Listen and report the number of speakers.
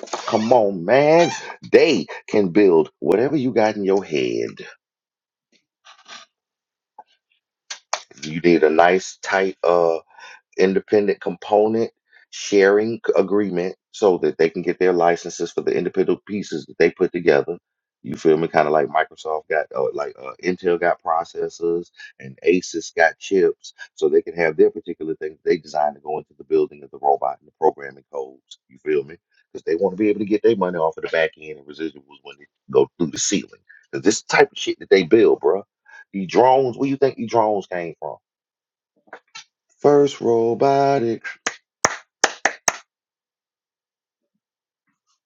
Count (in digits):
1